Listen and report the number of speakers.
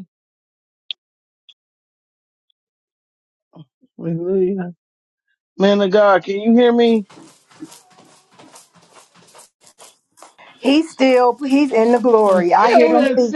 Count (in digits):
2